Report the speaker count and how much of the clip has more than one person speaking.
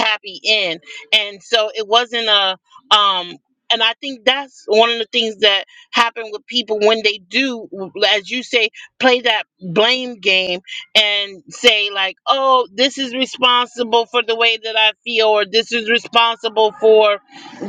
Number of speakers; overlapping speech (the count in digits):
1, no overlap